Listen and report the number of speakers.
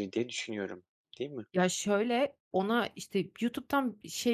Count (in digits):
2